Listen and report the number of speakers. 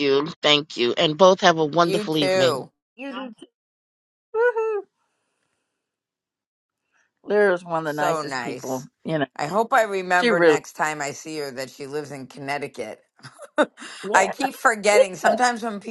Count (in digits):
3